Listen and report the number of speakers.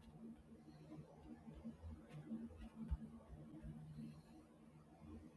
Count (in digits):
0